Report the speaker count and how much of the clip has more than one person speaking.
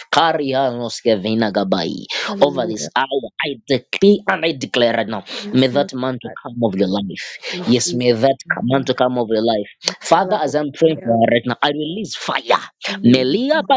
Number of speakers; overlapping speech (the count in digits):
2, about 26%